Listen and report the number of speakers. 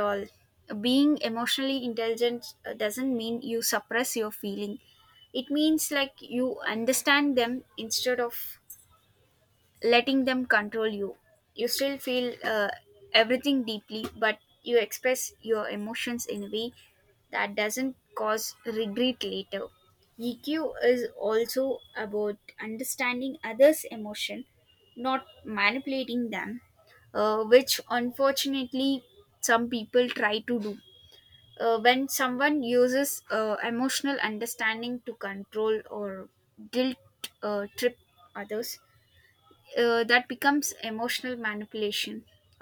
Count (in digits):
1